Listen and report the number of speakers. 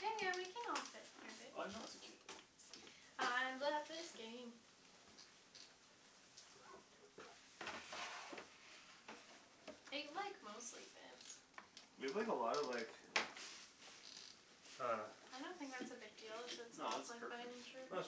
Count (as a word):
three